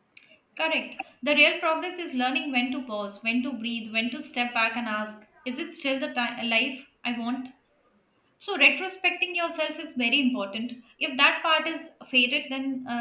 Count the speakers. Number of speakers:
one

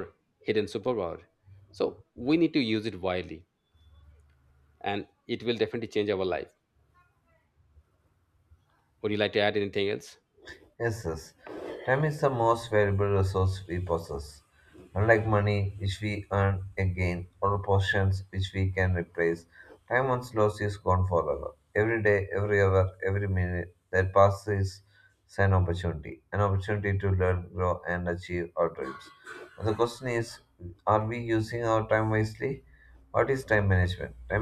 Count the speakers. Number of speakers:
two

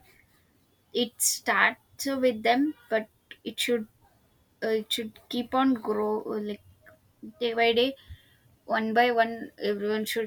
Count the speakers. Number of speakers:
one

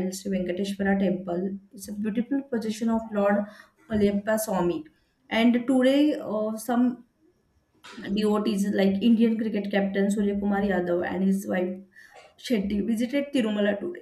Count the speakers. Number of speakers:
one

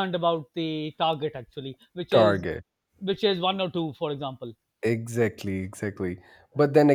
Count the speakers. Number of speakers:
two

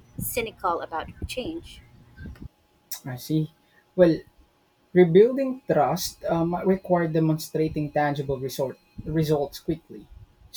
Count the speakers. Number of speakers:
two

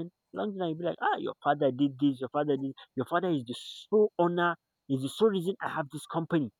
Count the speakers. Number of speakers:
one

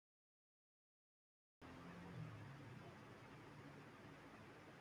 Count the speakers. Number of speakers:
zero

